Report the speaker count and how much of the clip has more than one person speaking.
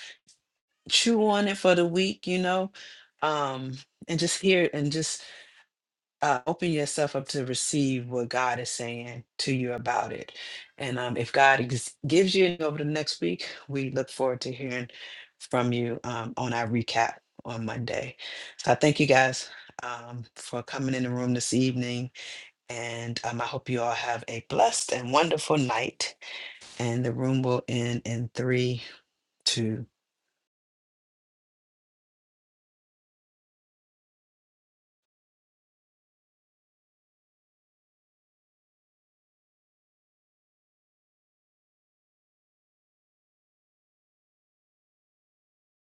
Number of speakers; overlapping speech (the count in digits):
1, no overlap